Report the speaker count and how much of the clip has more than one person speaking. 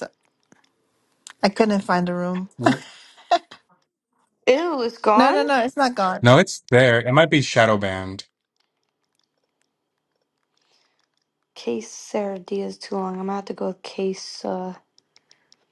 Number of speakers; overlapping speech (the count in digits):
3, about 2%